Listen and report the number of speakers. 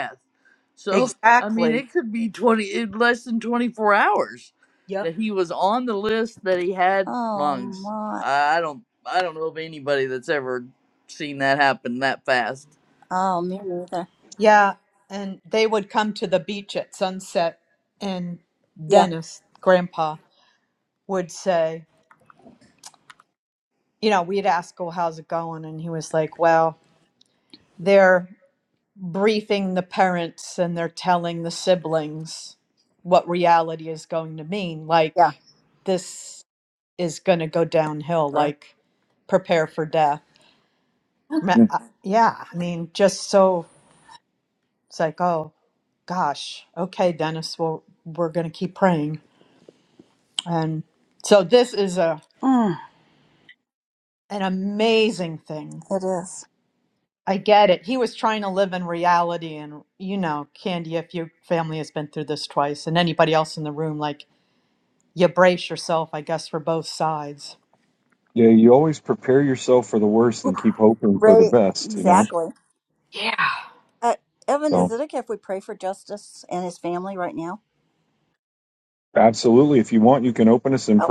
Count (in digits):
4